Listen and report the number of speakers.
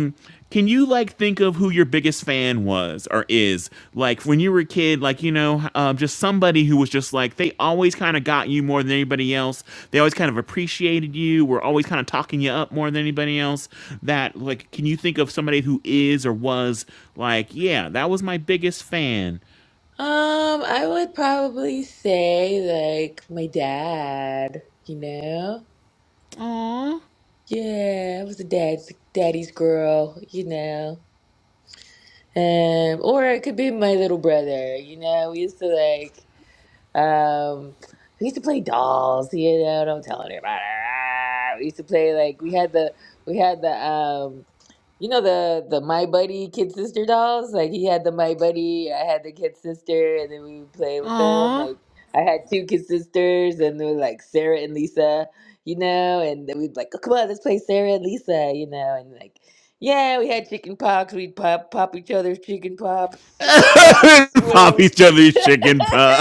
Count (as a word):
two